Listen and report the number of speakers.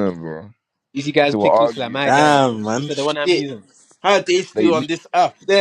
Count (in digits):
3